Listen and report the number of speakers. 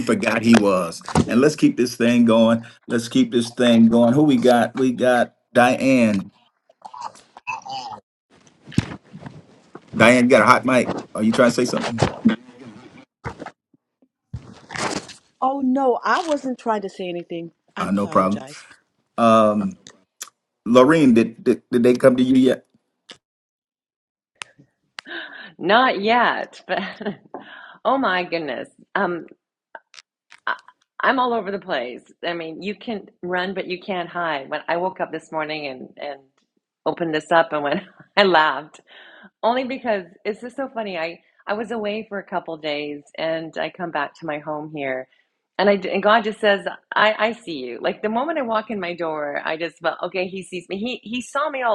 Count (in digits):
3